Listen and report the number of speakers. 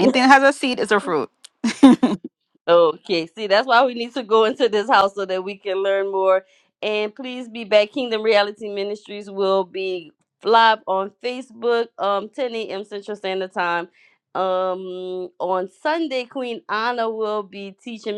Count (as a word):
two